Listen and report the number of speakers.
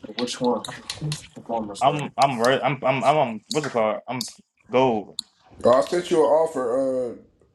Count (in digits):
3